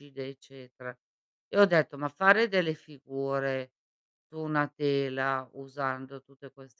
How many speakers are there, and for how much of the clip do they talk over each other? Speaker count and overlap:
1, no overlap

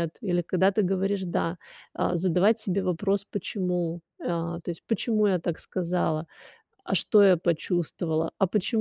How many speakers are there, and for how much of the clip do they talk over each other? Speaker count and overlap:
1, no overlap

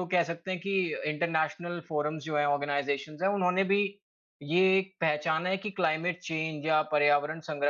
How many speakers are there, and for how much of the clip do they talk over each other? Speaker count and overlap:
1, no overlap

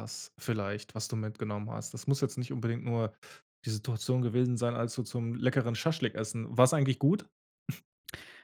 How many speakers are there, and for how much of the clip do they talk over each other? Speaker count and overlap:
1, no overlap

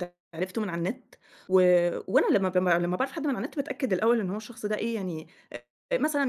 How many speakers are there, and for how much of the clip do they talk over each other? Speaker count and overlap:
1, no overlap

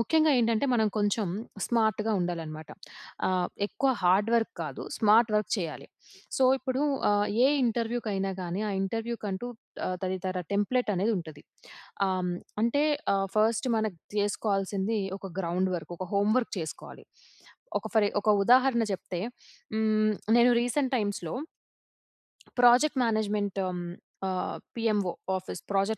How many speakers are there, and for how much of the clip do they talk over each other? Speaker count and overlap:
1, no overlap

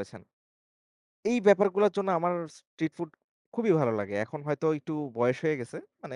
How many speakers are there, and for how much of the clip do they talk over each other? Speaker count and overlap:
1, no overlap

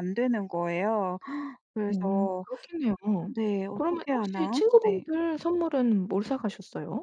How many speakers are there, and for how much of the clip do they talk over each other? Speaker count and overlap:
2, about 26%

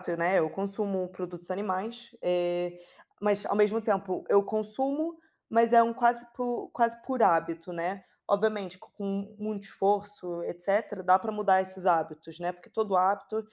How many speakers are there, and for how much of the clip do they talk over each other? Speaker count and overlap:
1, no overlap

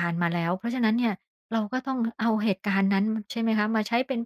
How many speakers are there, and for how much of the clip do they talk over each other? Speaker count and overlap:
1, no overlap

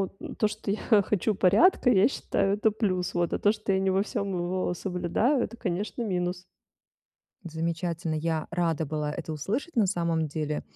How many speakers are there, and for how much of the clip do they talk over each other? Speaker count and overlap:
2, no overlap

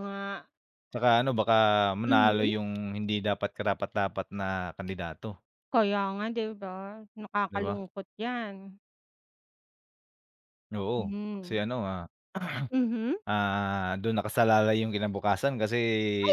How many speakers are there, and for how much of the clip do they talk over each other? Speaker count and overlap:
2, about 6%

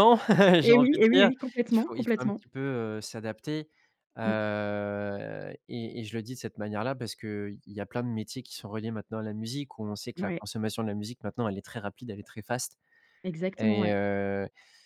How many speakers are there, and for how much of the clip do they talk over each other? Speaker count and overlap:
2, about 14%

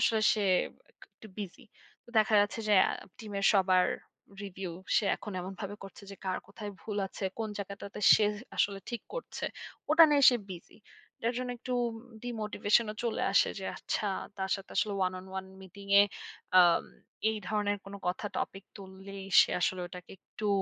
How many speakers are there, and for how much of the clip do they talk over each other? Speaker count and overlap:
1, no overlap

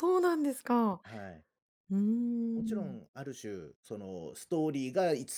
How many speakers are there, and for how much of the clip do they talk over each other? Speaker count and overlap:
2, about 6%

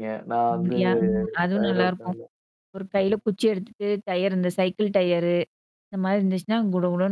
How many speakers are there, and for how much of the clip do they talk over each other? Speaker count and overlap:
2, about 13%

